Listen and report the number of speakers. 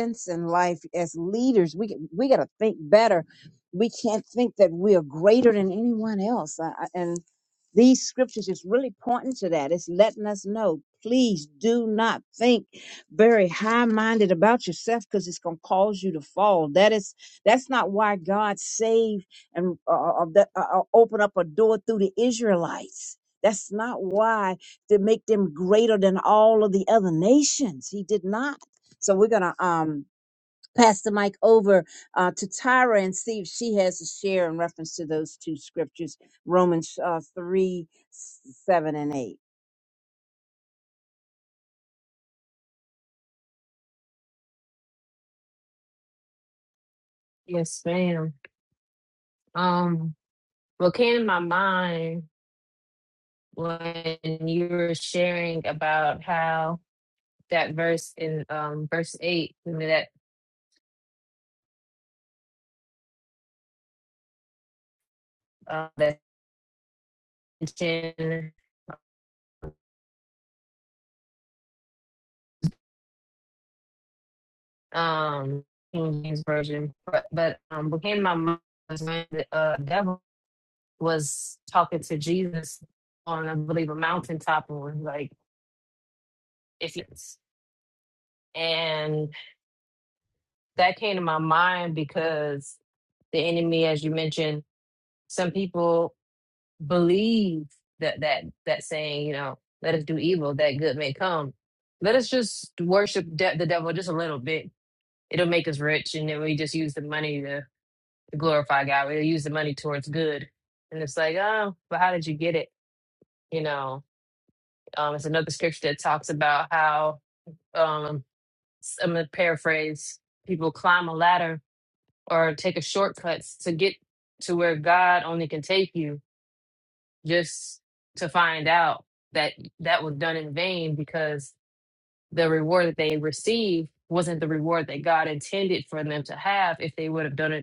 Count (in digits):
2